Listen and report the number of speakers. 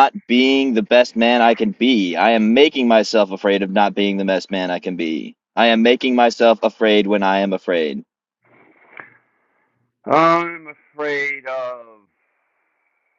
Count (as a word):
two